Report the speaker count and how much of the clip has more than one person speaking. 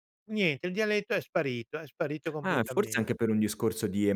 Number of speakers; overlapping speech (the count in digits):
2, about 13%